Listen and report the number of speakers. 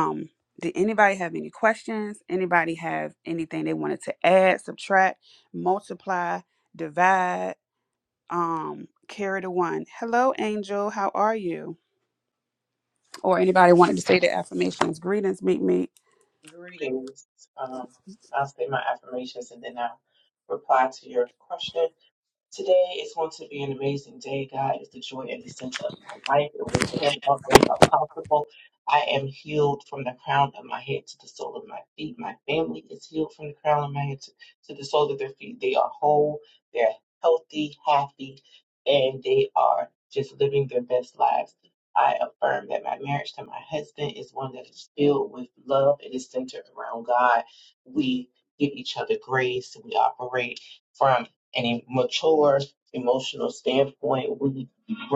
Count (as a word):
two